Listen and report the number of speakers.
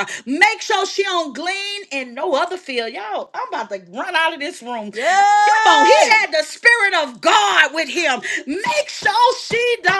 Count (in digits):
2